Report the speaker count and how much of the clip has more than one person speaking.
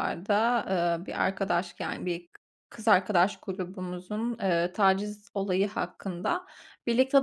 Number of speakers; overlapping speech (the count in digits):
1, no overlap